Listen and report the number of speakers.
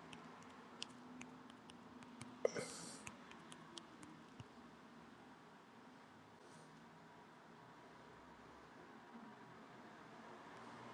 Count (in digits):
0